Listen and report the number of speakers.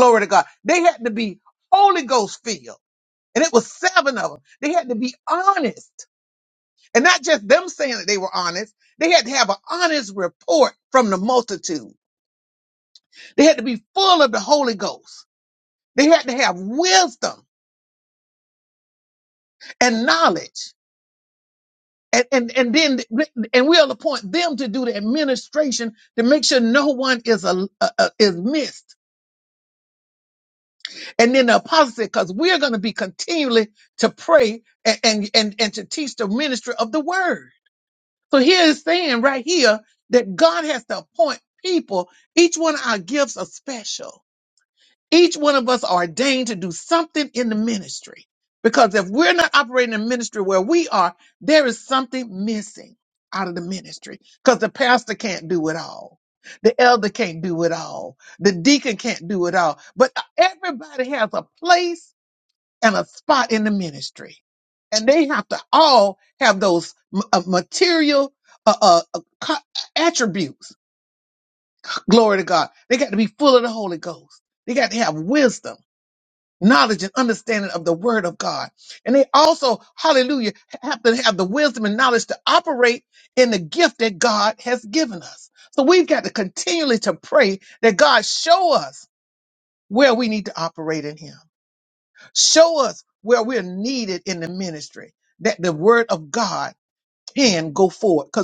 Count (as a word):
one